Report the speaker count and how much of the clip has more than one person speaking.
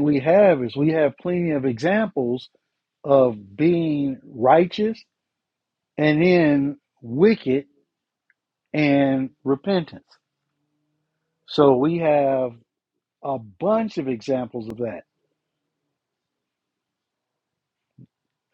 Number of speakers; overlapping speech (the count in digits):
1, no overlap